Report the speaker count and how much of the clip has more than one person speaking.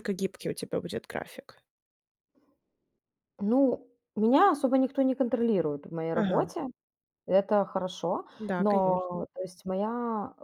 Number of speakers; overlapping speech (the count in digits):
2, about 11%